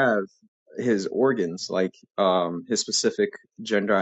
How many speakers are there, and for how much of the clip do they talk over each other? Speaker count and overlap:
1, no overlap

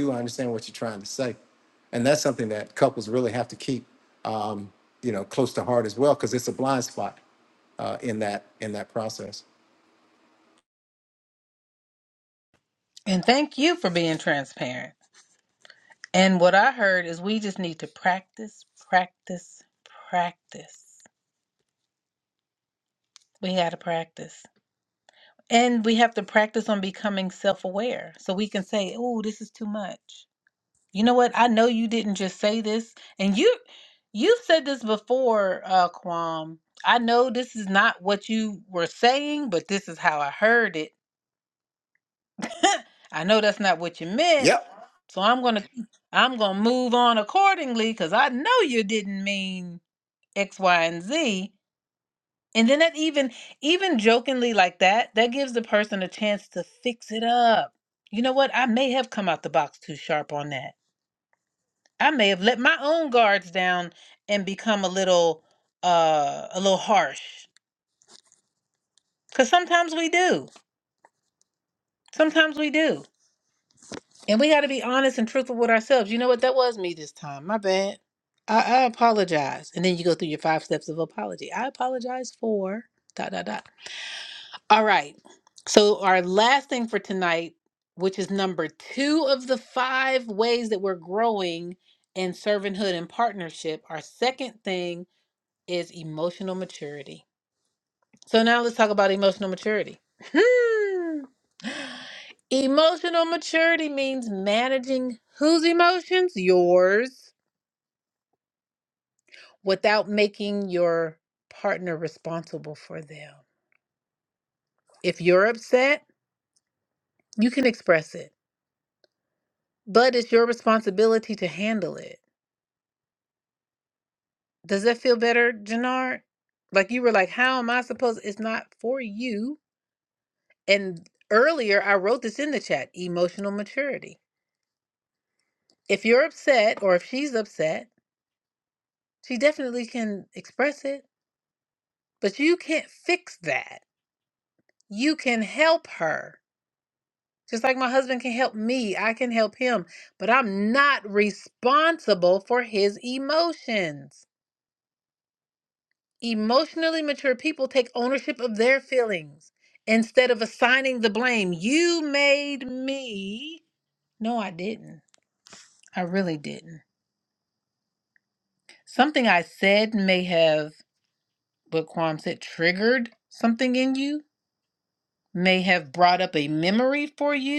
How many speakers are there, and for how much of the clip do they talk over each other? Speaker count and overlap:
2, under 1%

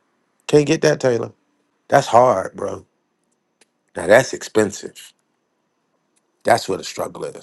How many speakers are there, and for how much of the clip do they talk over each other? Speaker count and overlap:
1, no overlap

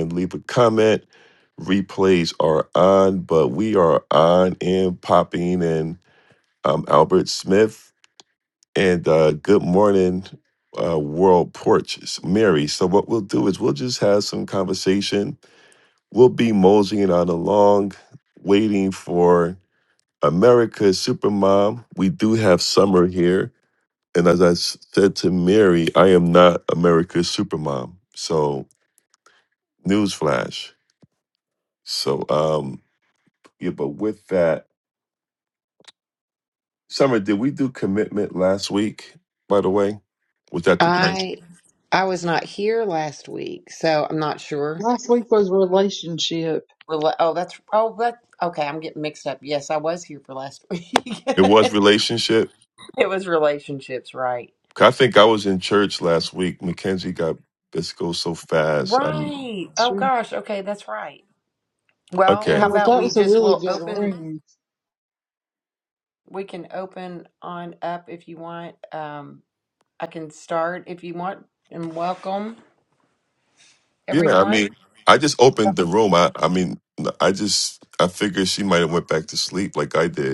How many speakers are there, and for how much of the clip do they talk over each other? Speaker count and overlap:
3, about 5%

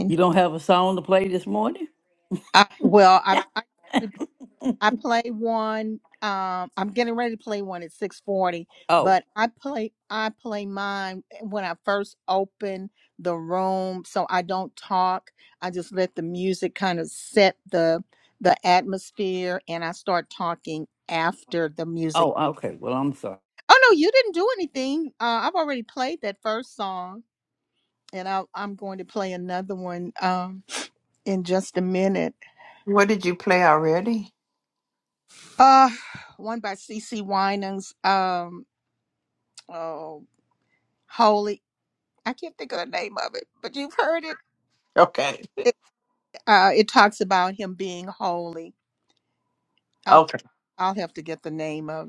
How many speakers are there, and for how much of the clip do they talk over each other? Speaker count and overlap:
3, about 1%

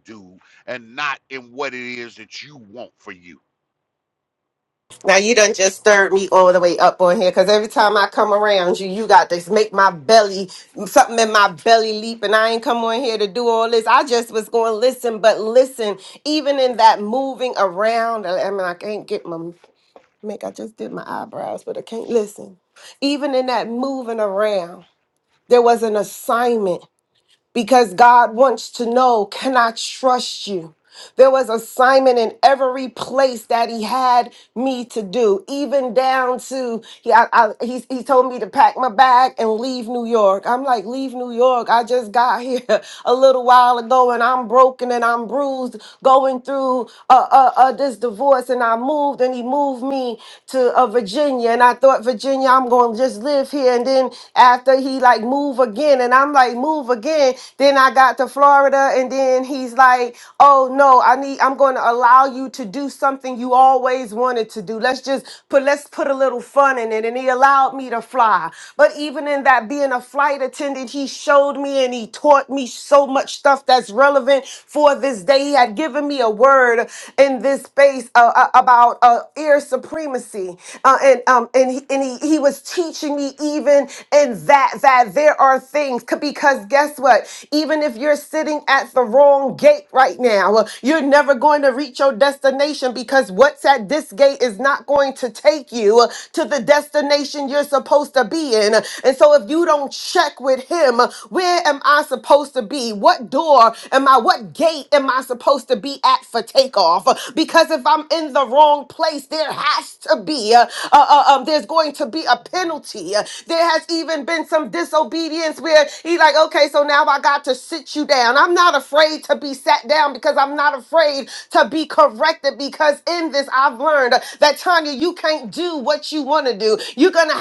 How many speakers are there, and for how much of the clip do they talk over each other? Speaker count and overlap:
2, no overlap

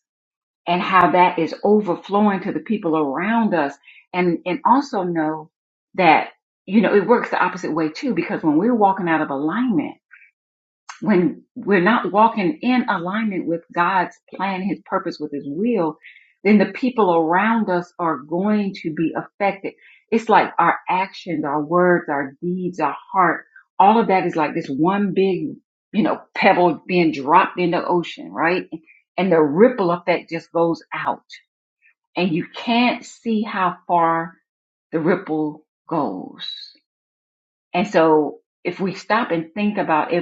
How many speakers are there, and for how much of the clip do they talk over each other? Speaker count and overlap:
1, no overlap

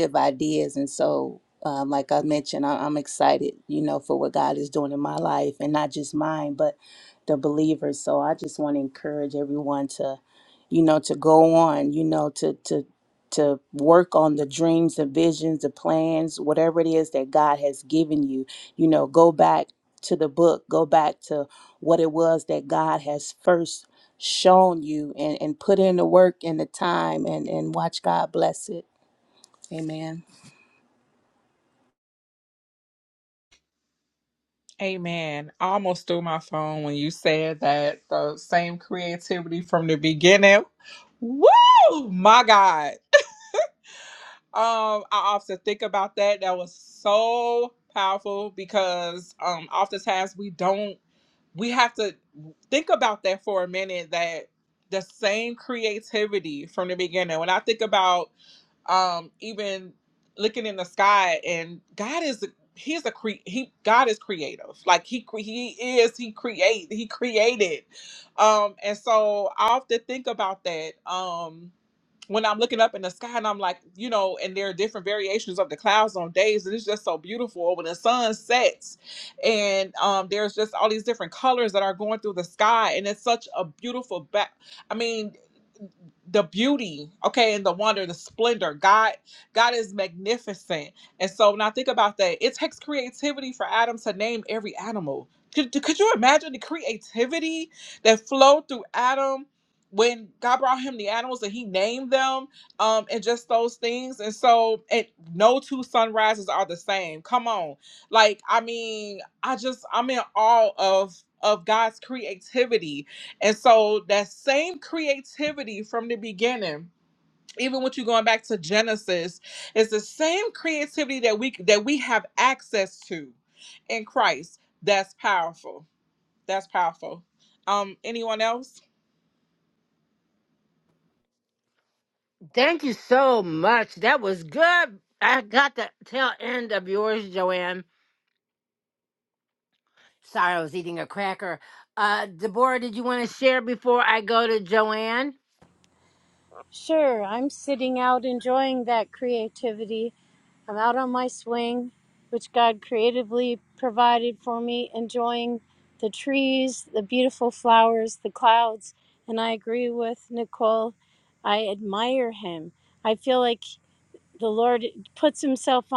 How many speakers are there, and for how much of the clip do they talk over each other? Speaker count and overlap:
4, no overlap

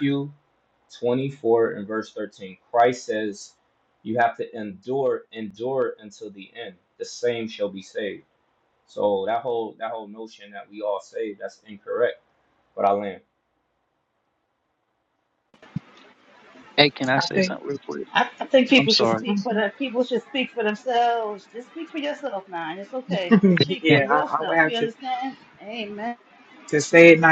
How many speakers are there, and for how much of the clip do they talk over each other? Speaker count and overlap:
4, about 7%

